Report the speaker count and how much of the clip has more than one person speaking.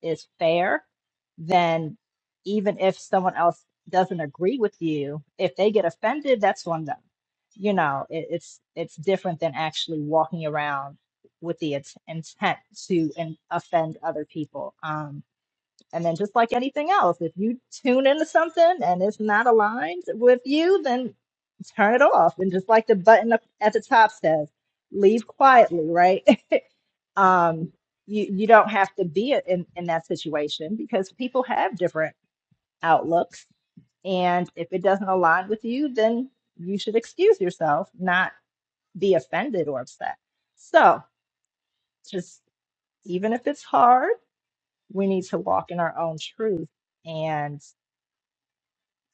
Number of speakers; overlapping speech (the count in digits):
1, no overlap